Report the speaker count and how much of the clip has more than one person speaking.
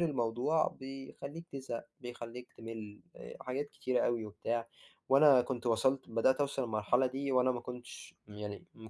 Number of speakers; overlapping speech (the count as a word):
one, no overlap